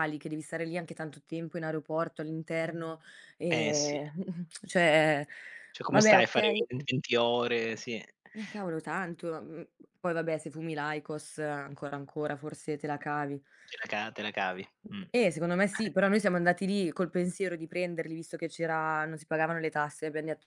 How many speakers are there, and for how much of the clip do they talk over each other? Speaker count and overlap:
two, about 7%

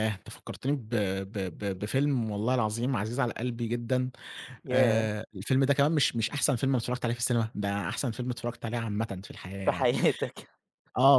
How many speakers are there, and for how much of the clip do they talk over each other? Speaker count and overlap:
two, about 6%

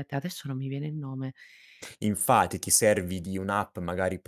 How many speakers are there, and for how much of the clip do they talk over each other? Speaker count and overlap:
two, no overlap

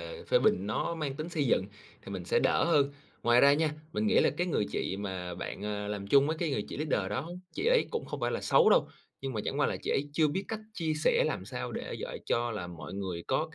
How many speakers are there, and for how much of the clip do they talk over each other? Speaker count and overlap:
one, no overlap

